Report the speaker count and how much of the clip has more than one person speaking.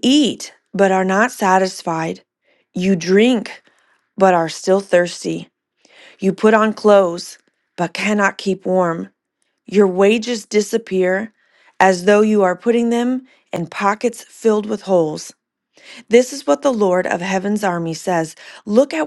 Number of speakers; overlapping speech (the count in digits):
1, no overlap